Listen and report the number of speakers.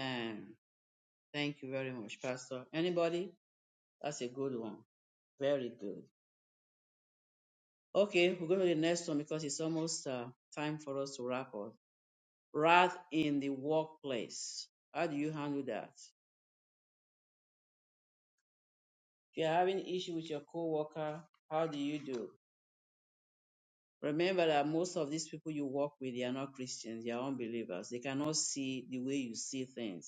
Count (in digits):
1